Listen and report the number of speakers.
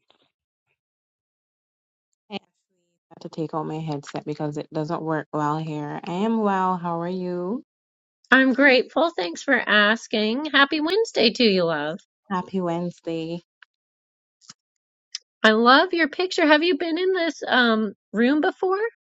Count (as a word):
two